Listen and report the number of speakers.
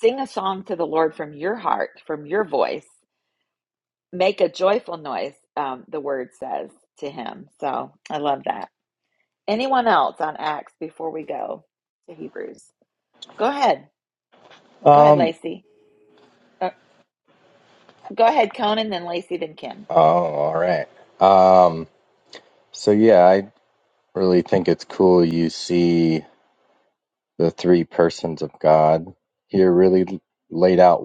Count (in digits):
2